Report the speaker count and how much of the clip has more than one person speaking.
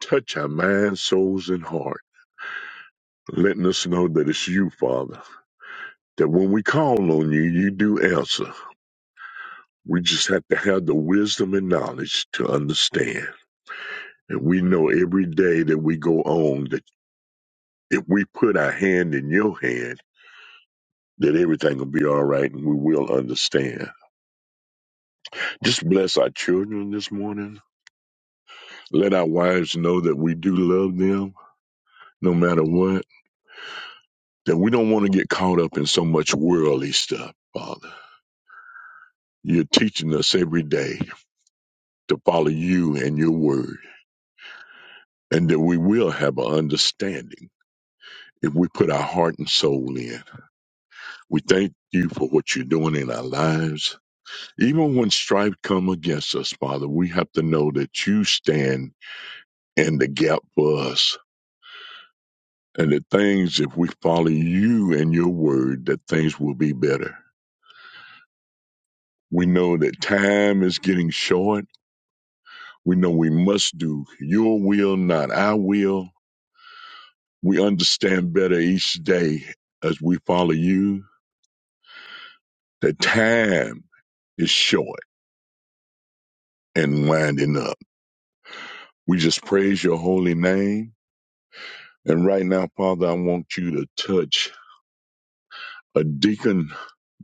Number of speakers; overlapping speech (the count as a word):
one, no overlap